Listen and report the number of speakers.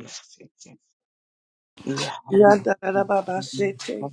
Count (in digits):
2